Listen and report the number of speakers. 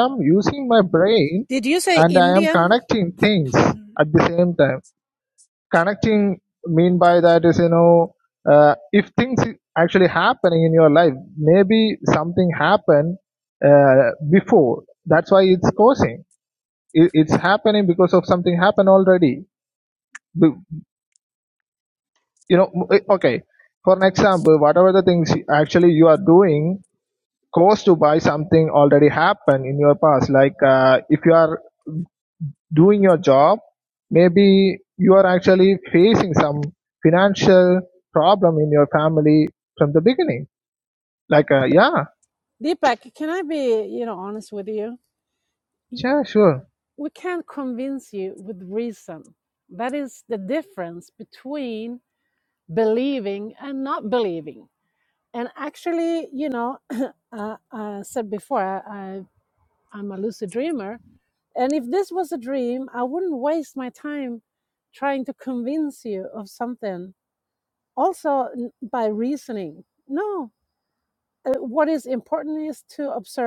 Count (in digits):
2